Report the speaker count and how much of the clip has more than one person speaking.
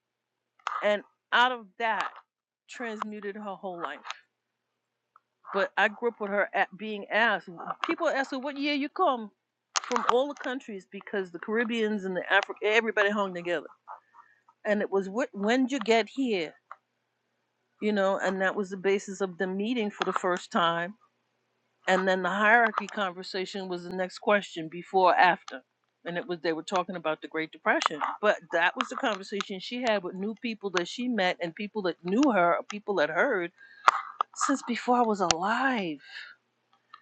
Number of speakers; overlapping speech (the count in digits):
1, no overlap